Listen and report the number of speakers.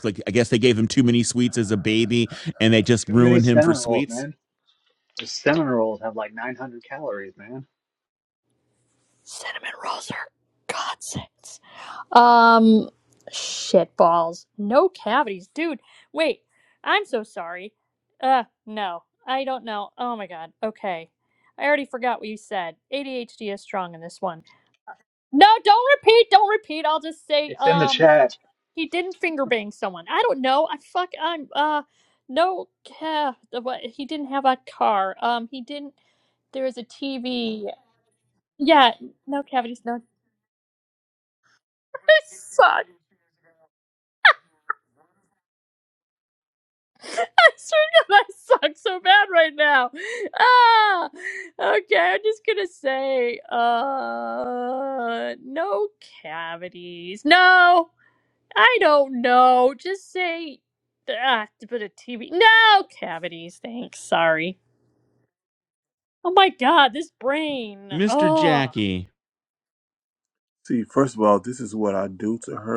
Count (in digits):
4